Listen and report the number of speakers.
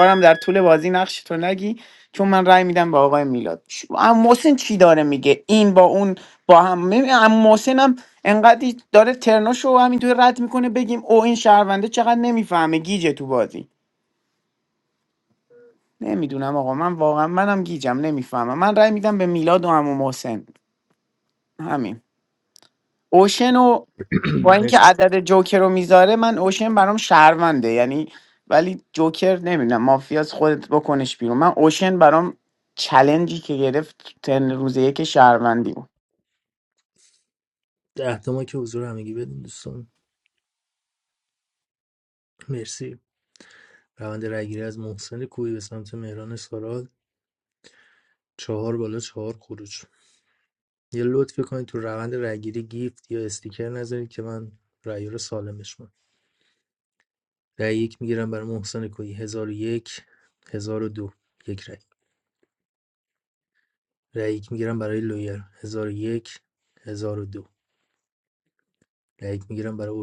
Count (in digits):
2